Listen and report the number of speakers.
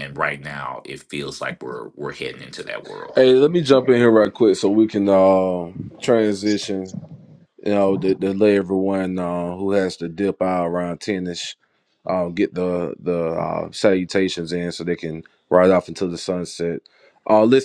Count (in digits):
2